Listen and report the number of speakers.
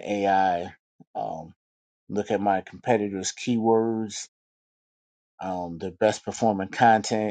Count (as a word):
one